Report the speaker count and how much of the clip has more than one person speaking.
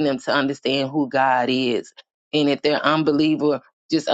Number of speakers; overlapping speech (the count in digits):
1, no overlap